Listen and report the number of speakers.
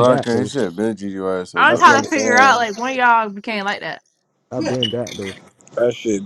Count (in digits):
4